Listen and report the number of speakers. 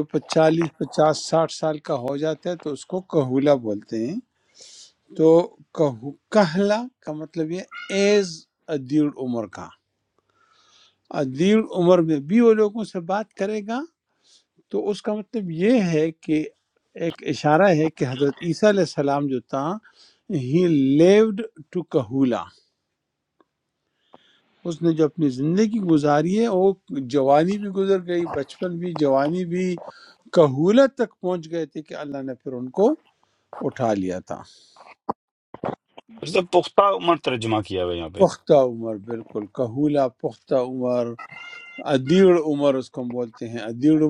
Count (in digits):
2